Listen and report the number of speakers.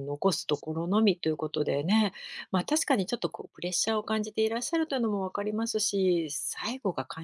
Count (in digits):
1